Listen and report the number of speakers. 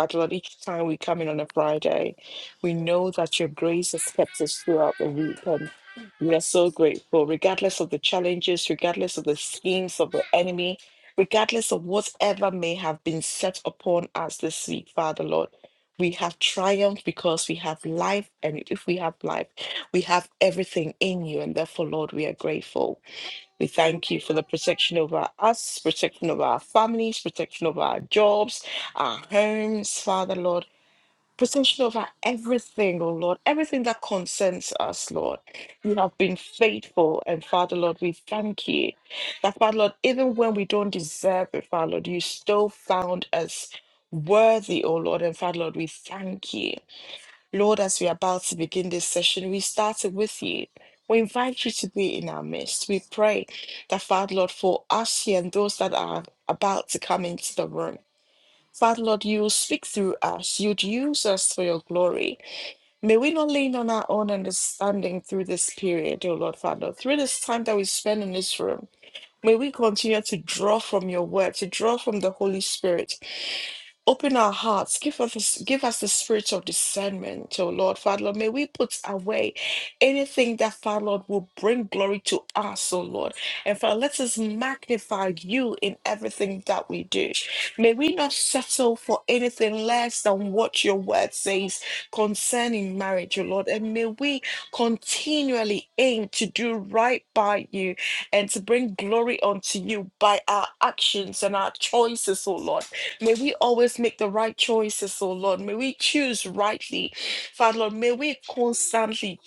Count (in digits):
1